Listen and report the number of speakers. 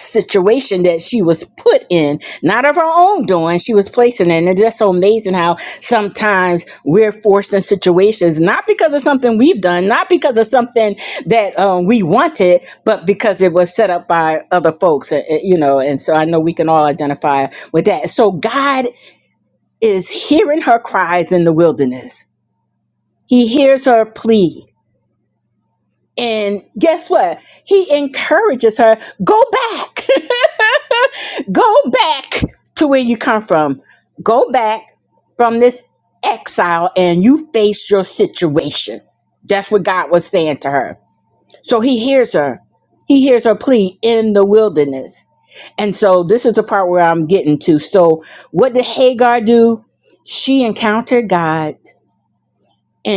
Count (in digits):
1